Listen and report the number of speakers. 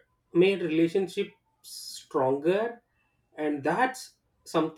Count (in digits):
1